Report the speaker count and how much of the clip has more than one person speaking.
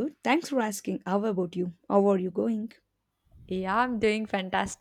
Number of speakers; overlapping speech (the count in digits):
2, no overlap